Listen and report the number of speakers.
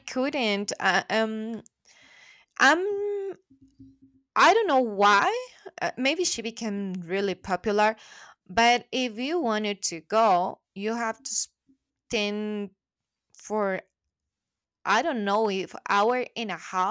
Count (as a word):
one